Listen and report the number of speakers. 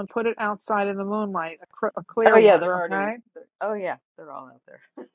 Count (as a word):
two